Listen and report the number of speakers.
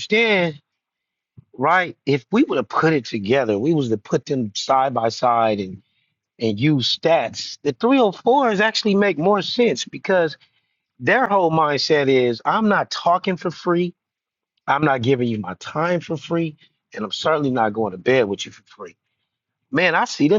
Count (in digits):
1